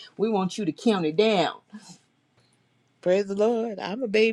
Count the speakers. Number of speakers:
two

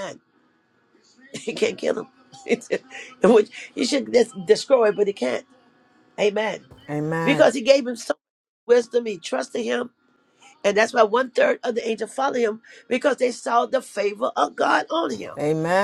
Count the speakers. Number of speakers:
two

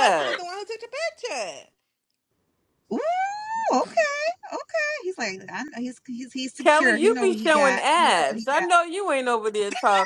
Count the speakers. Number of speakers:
three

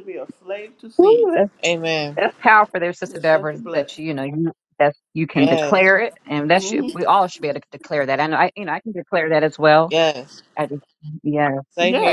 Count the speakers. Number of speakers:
three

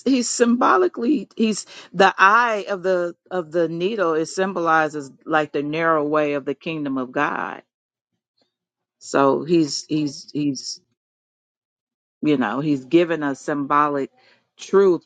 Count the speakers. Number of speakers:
one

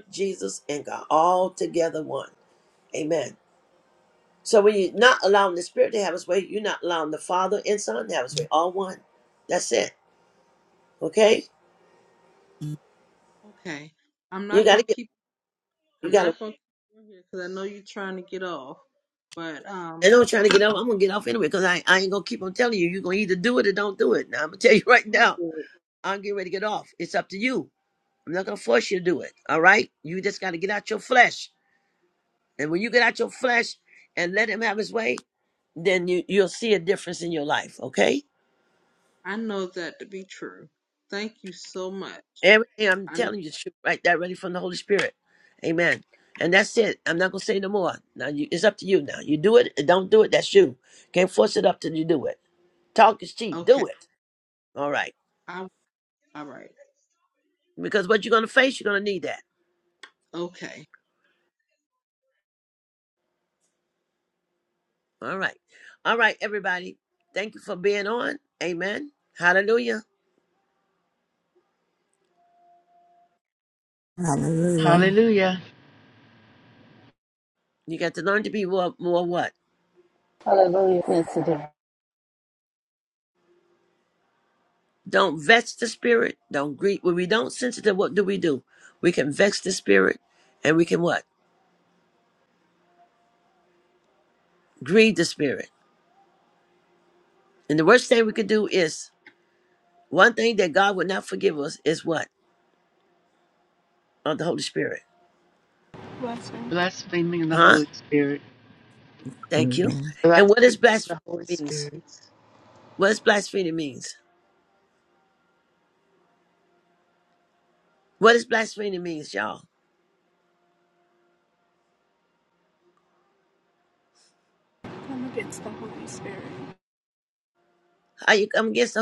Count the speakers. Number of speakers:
six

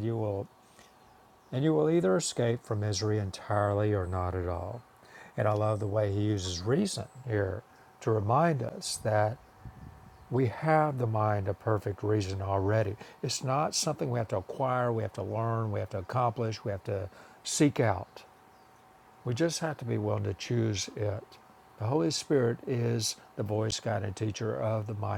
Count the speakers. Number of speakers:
one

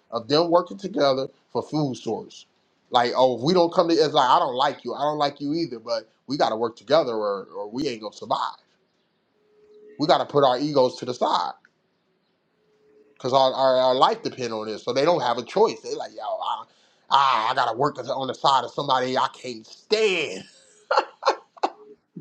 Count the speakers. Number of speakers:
one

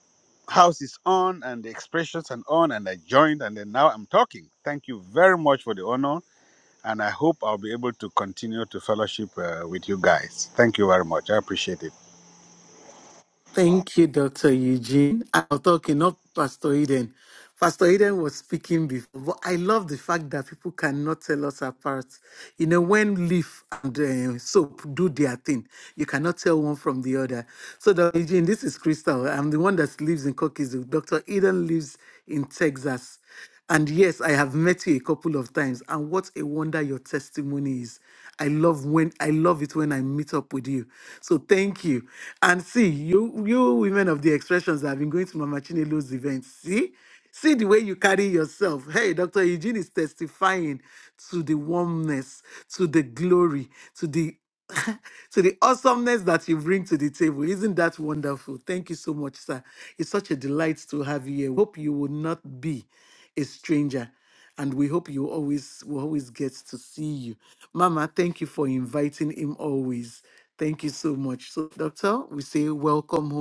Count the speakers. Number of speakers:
two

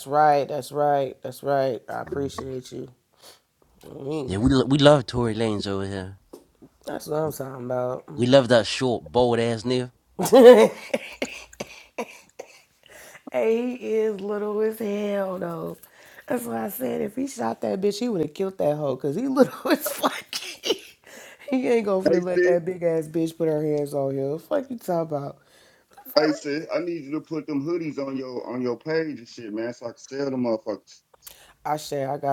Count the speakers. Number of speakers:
three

